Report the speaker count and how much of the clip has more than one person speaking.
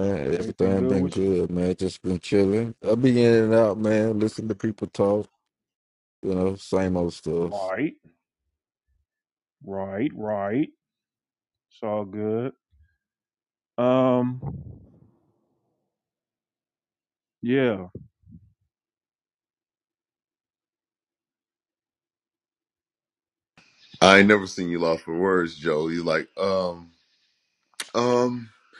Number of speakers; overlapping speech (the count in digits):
3, about 3%